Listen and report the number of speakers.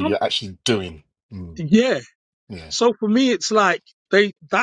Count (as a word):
two